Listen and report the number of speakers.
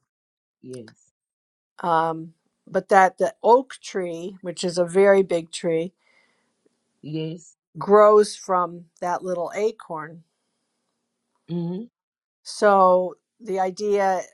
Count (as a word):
two